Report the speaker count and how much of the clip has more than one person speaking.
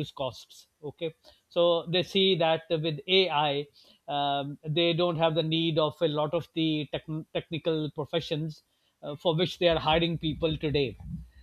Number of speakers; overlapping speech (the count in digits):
1, no overlap